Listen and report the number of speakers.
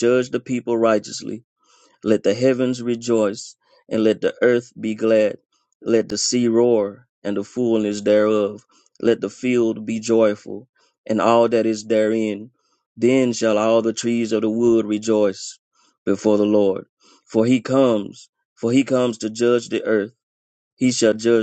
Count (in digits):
1